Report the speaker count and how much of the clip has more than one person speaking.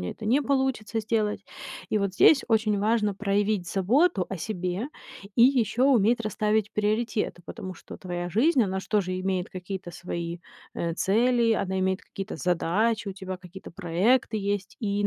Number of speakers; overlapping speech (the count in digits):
1, no overlap